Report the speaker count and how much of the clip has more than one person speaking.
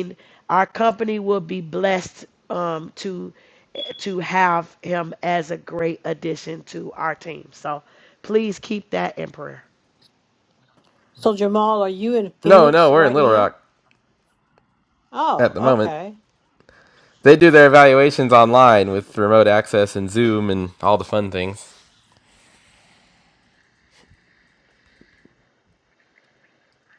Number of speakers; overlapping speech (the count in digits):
3, about 6%